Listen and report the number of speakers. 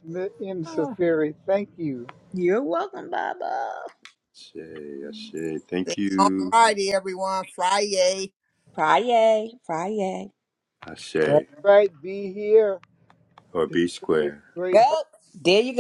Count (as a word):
four